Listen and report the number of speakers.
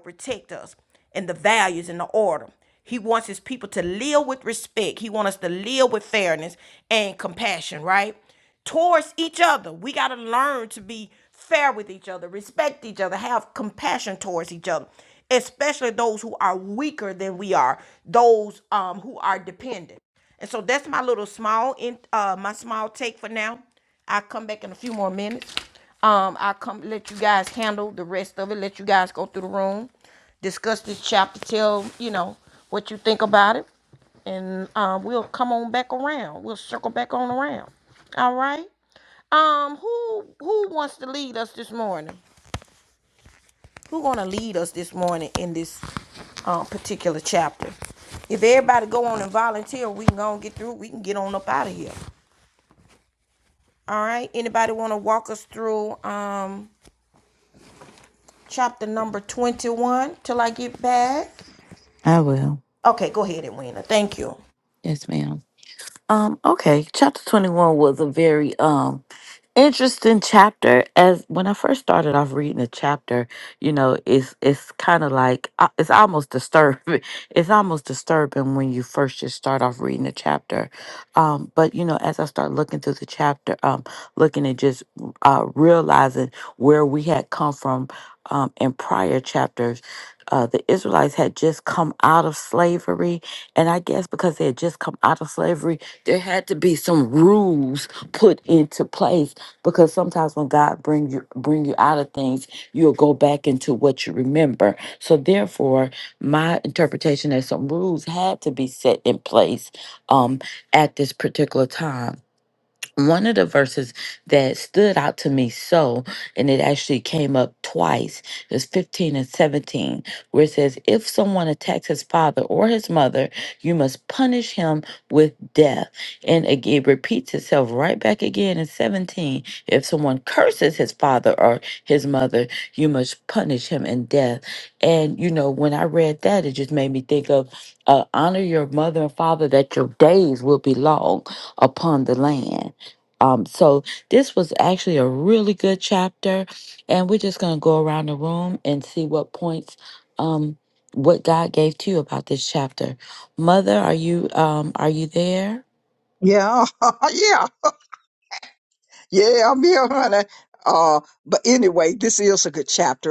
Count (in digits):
3